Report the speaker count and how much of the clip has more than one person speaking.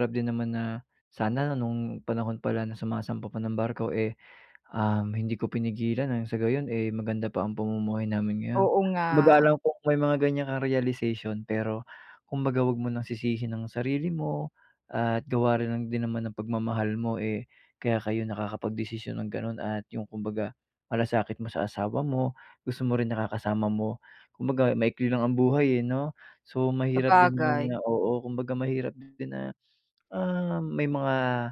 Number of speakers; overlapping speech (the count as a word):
two, about 3%